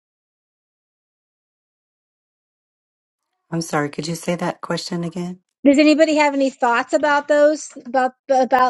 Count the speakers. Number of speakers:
two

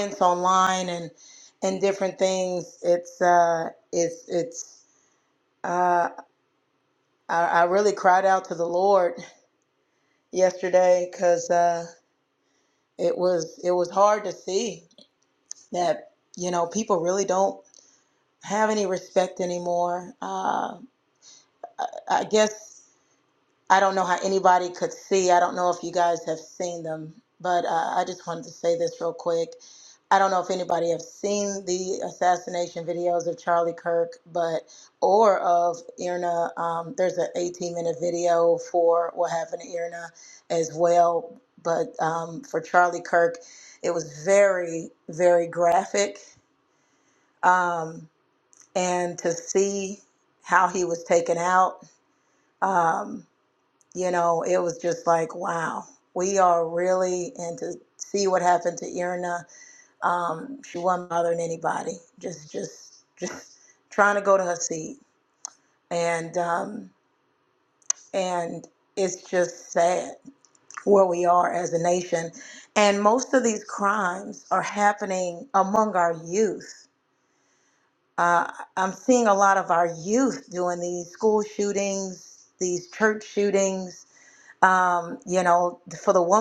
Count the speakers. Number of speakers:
one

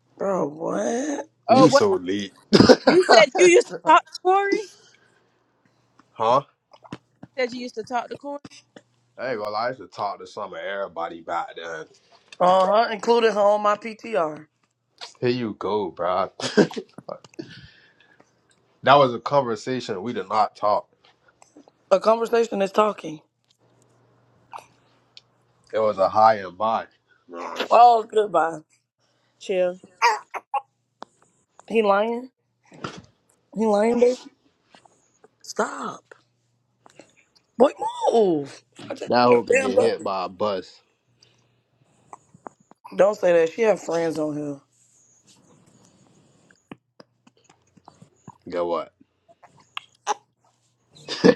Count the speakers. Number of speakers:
three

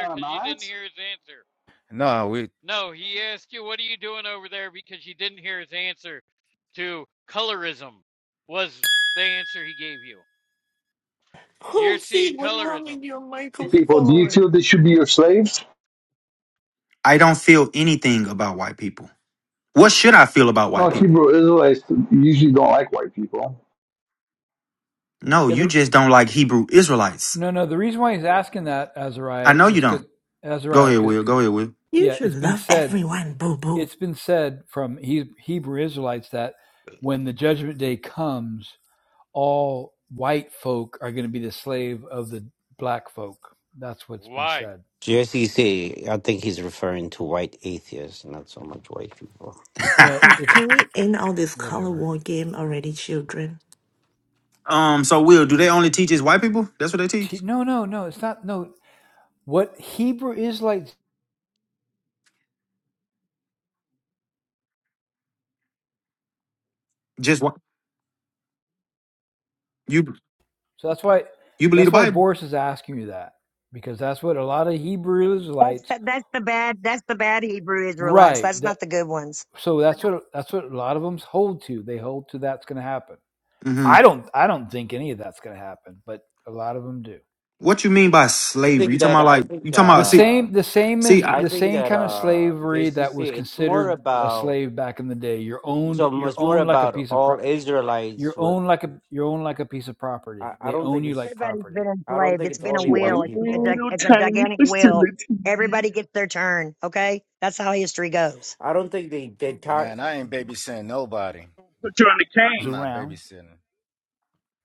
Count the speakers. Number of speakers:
nine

